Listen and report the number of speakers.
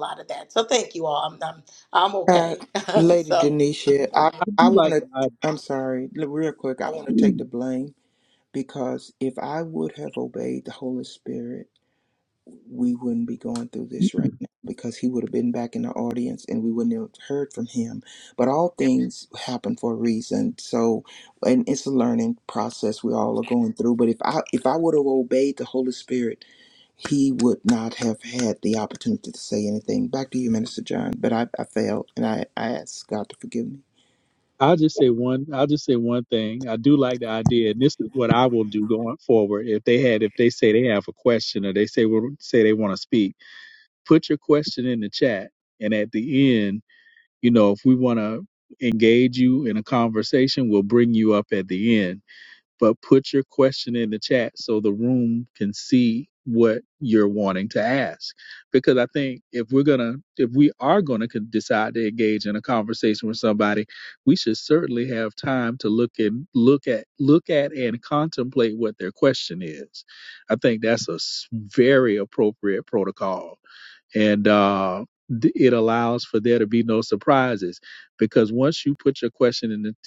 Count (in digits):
3